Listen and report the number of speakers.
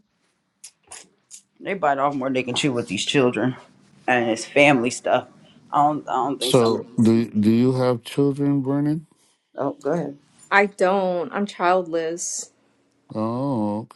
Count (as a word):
three